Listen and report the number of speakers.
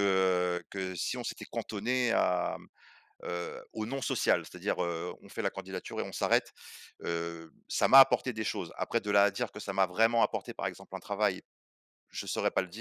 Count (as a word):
one